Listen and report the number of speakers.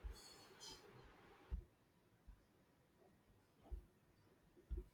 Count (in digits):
0